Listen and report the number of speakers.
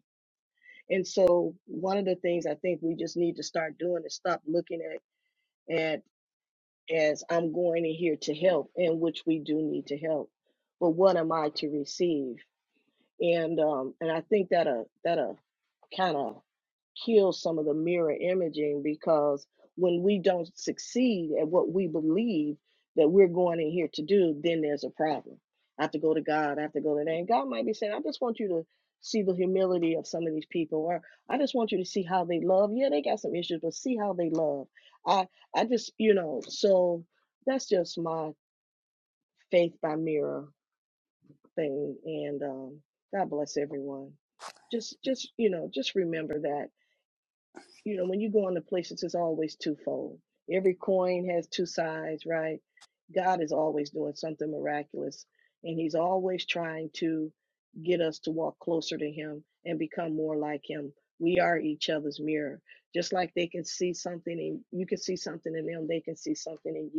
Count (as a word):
one